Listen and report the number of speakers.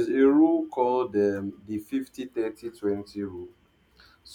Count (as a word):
one